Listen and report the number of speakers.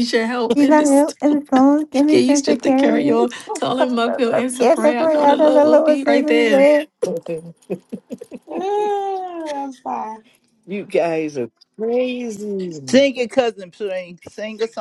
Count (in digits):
5